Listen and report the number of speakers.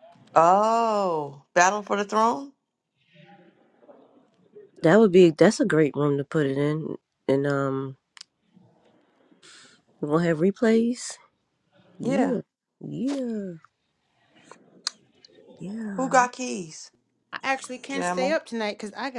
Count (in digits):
3